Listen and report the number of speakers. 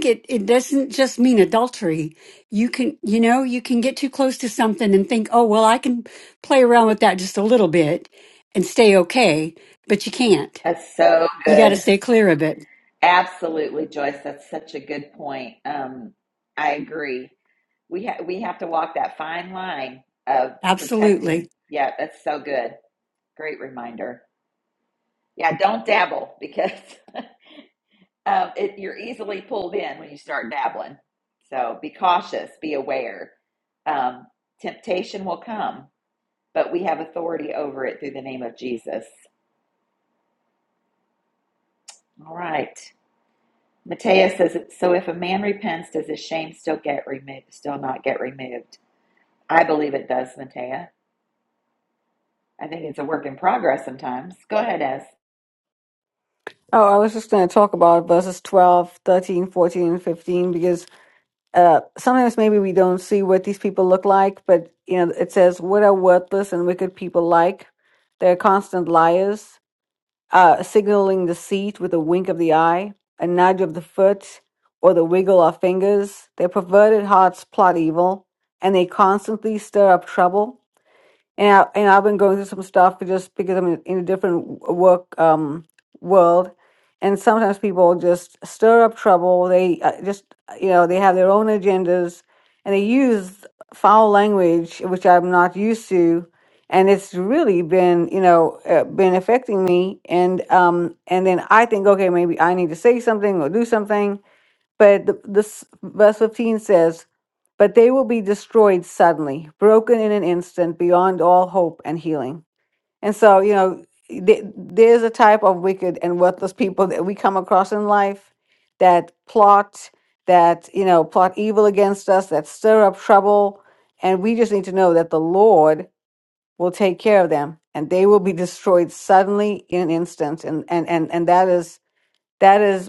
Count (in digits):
3